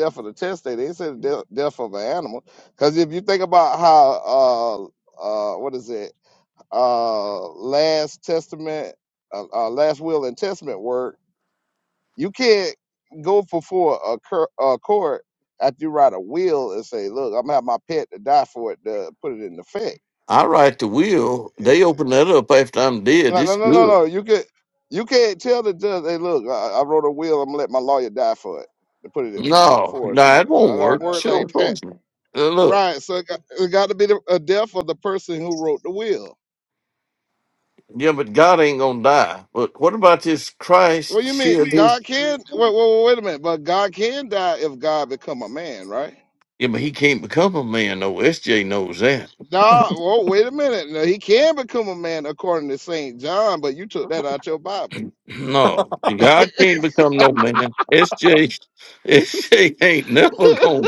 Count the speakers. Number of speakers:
two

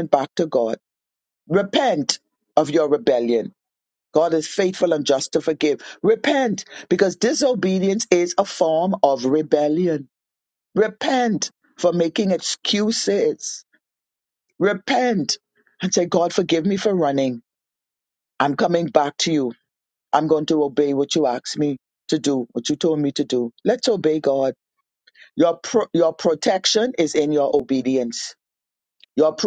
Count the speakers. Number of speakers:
one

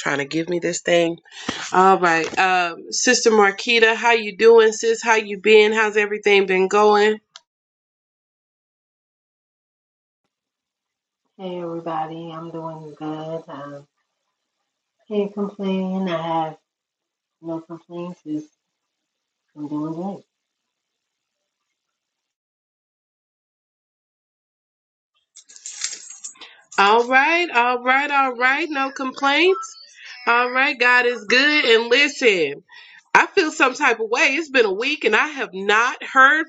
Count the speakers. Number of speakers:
two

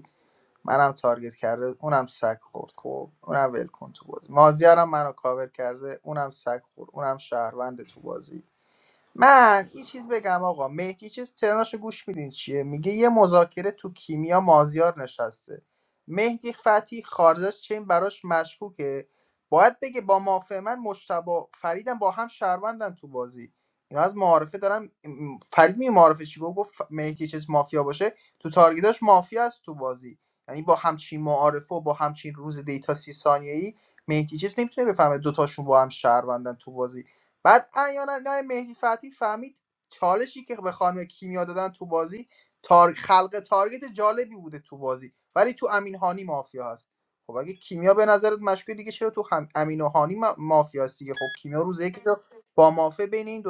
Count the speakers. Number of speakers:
one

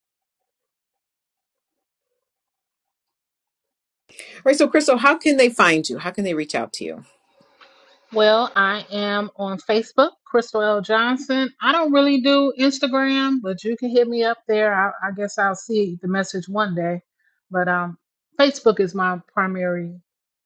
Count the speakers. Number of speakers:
two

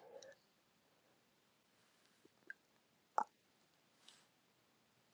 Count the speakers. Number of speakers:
zero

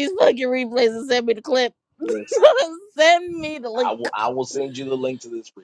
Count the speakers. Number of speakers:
two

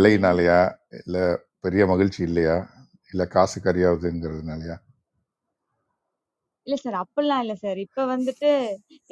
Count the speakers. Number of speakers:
two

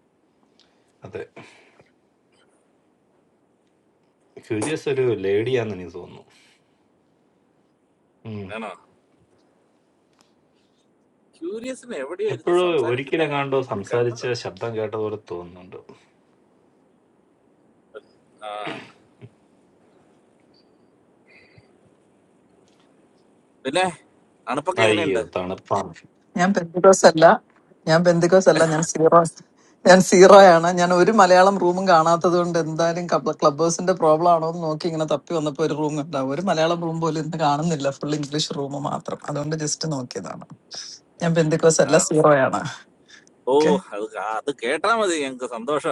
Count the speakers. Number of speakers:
three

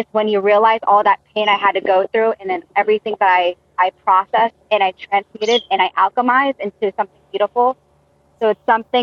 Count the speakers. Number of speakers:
one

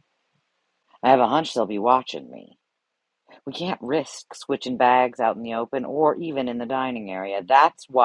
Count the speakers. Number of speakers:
one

